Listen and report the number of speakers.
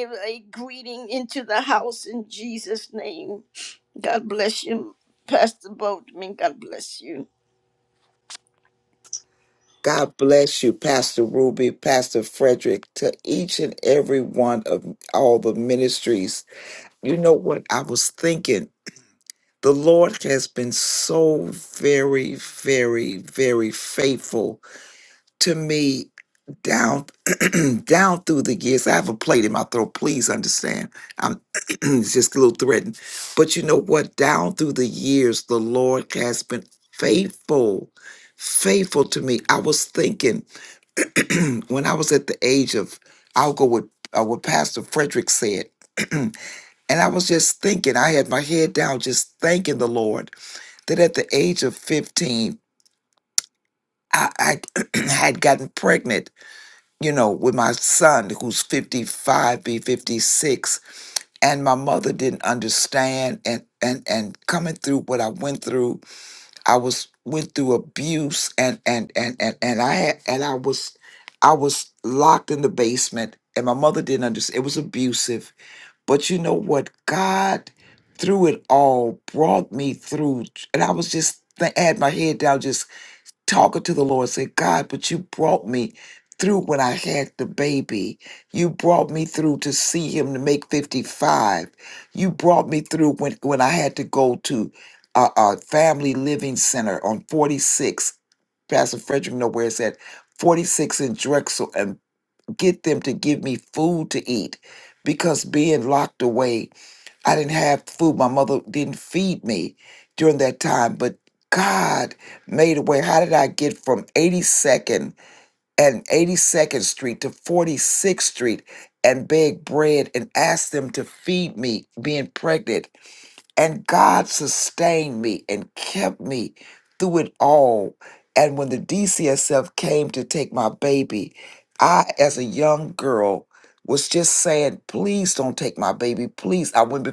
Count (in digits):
2